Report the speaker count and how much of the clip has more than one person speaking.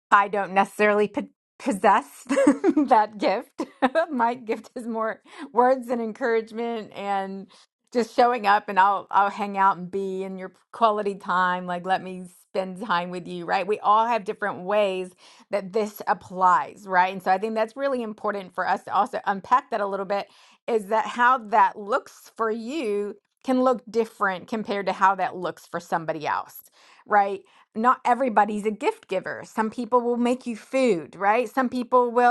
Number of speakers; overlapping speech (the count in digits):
1, no overlap